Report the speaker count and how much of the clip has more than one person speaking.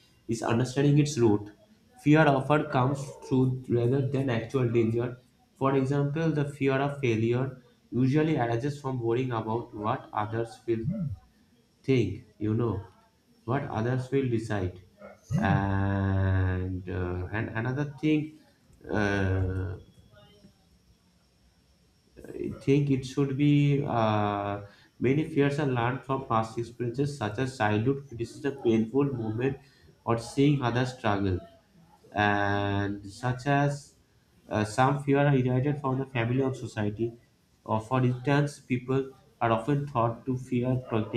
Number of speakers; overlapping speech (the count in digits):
1, no overlap